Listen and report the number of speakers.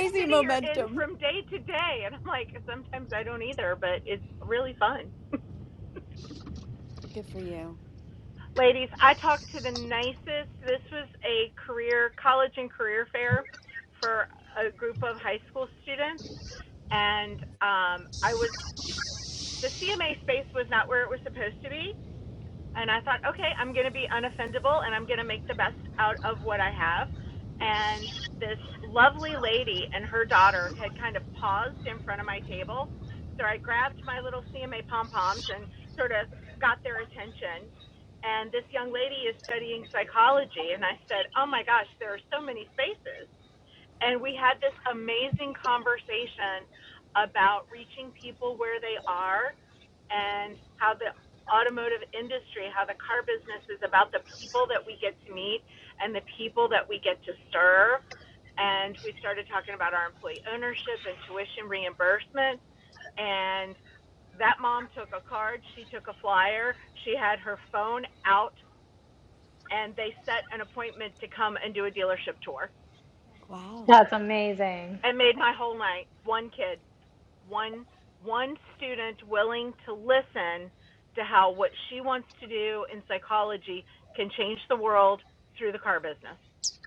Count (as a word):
three